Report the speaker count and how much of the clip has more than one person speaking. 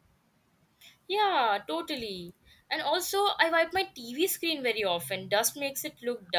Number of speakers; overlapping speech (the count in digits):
1, no overlap